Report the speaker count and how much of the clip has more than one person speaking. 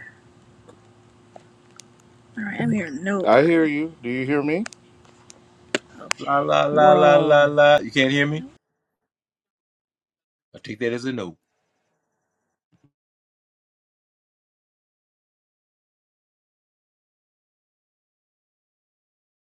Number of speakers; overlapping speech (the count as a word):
three, about 9%